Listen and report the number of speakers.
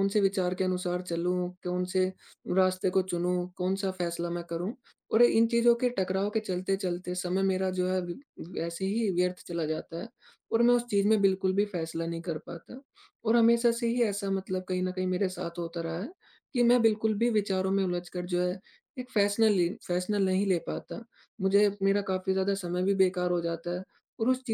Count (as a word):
one